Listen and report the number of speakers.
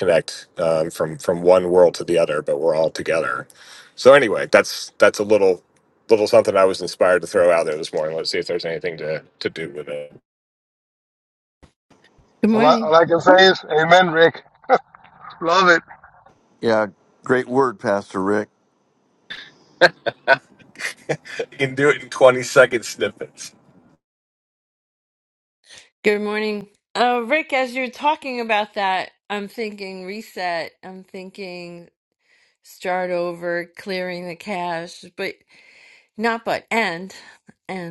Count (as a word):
four